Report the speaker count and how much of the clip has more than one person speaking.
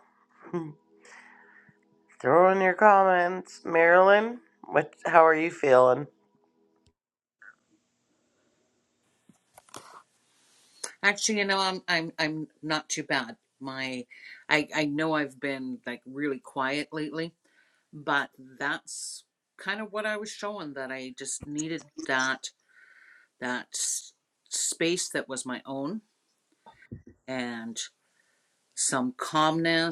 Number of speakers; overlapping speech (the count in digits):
2, no overlap